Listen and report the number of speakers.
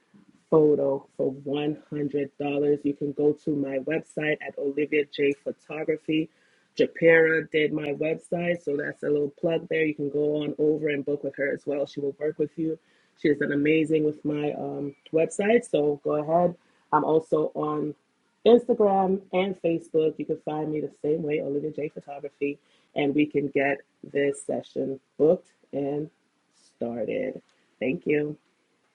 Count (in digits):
1